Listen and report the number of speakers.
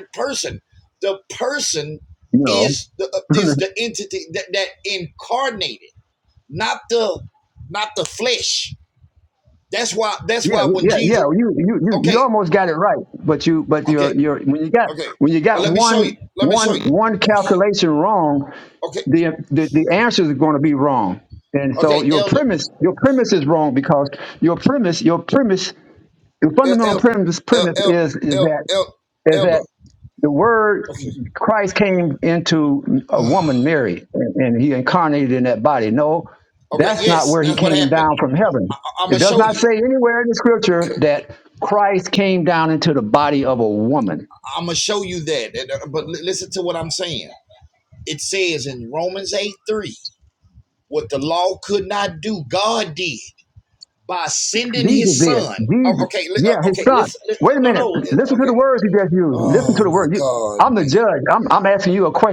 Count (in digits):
2